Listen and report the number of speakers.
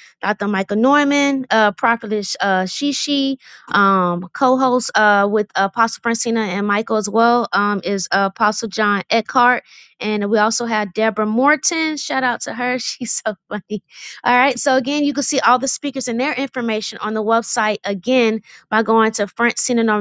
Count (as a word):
one